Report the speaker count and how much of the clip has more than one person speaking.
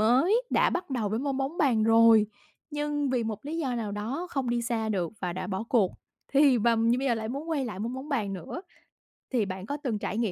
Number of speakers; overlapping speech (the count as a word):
one, no overlap